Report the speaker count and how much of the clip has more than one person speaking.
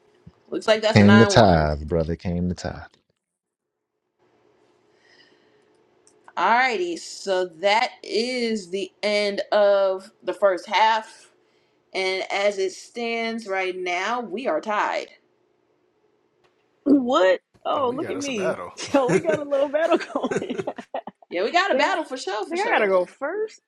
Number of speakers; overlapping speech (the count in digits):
3, about 6%